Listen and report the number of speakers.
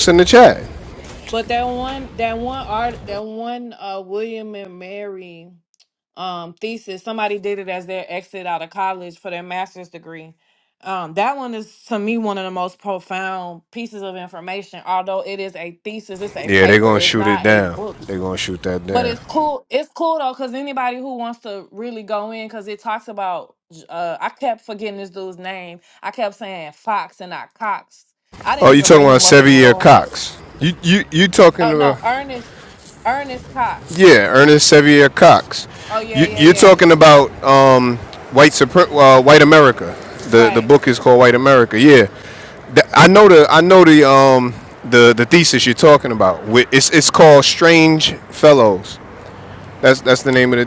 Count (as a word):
two